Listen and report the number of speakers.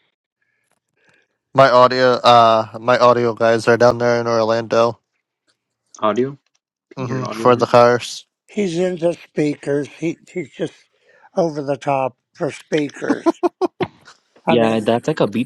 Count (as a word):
three